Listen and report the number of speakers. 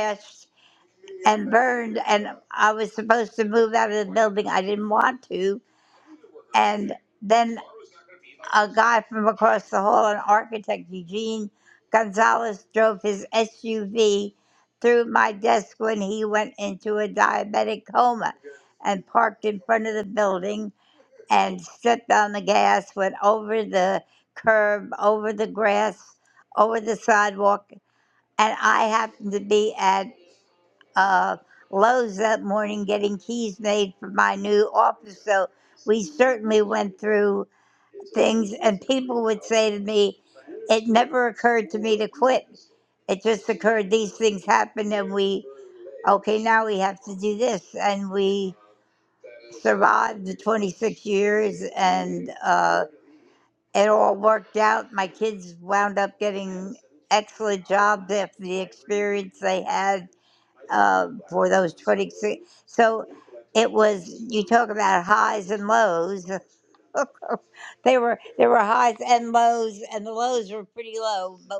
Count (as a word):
one